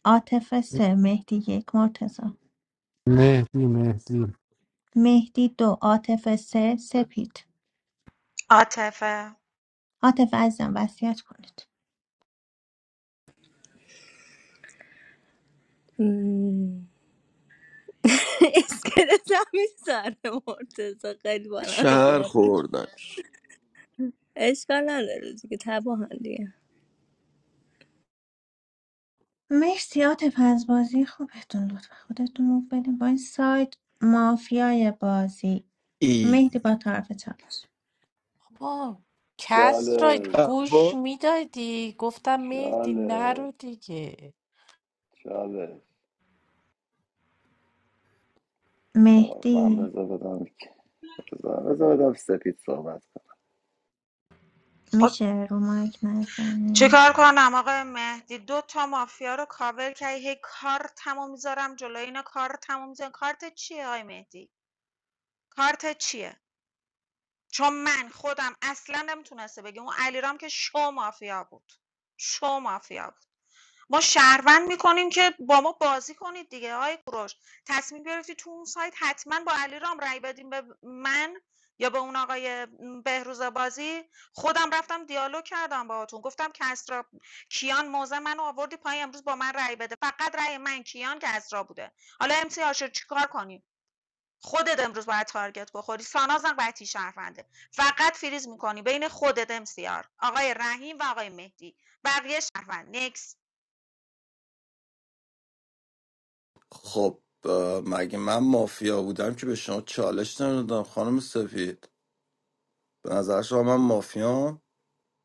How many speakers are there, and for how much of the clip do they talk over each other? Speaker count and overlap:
7, about 4%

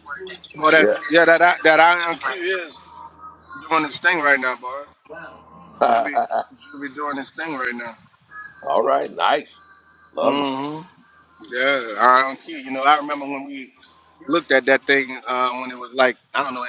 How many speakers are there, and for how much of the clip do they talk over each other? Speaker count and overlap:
3, about 13%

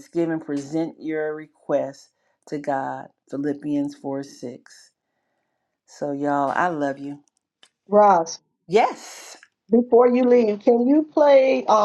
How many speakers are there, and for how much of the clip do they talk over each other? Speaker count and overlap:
2, no overlap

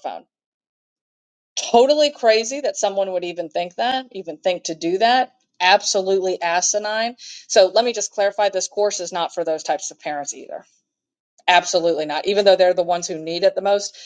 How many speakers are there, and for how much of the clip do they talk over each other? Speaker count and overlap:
1, no overlap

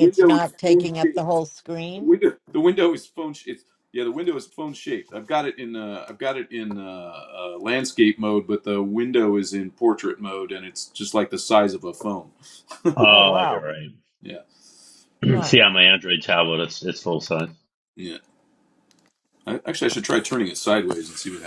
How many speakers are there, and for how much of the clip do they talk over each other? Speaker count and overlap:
3, about 10%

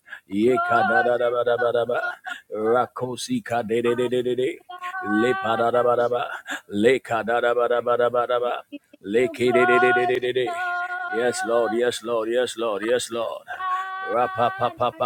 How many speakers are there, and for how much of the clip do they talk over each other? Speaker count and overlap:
2, about 35%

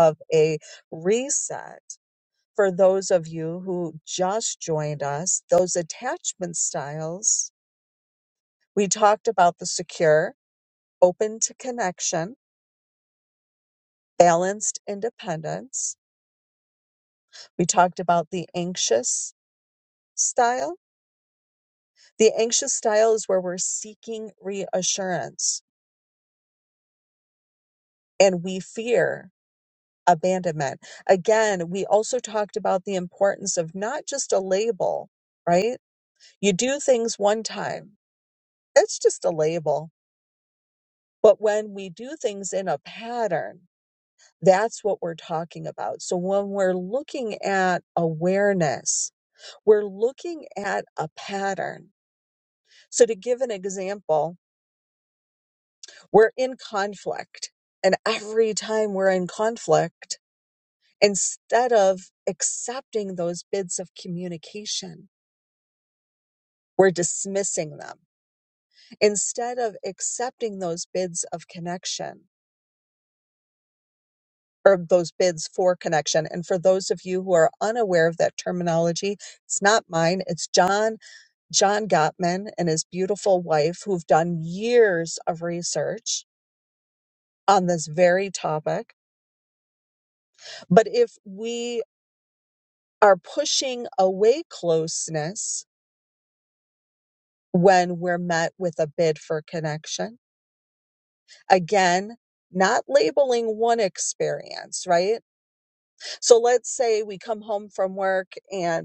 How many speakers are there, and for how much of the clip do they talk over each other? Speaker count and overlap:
1, no overlap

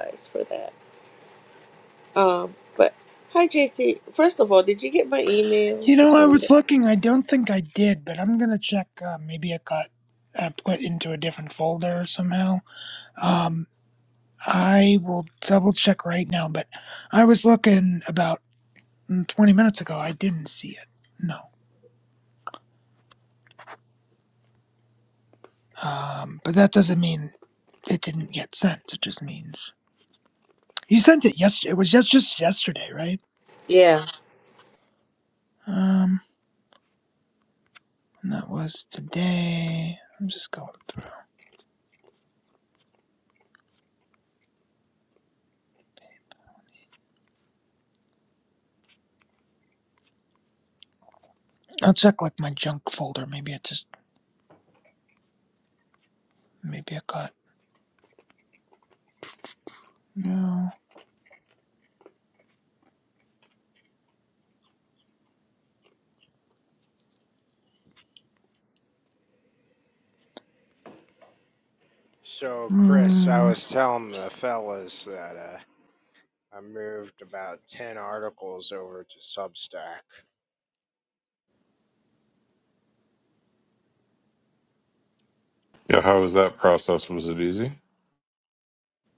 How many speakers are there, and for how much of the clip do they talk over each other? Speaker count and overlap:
4, about 2%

